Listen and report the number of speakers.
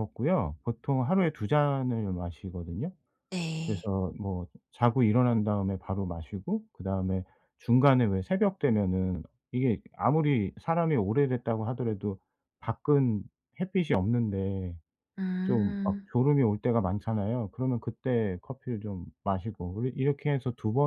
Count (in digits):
2